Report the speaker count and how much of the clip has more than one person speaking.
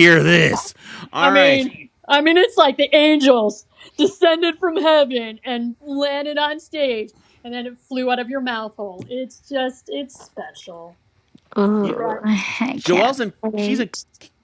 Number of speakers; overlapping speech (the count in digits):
3, about 13%